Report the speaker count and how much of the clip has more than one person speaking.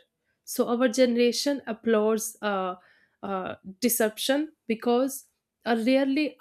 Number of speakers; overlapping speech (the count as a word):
one, no overlap